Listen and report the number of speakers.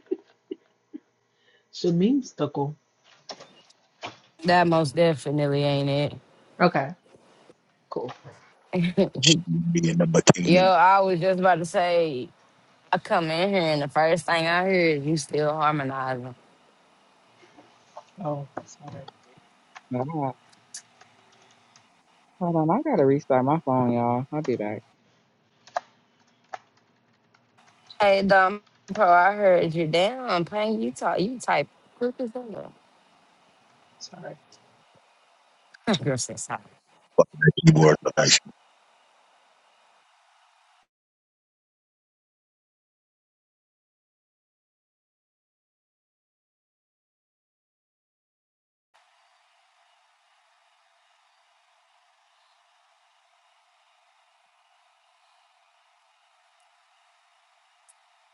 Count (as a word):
four